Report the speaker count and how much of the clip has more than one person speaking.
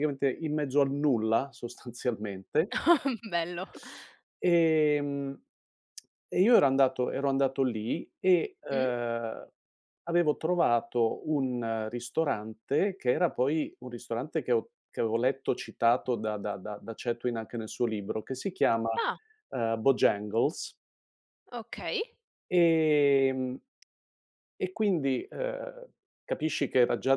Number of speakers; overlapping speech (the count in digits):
2, about 1%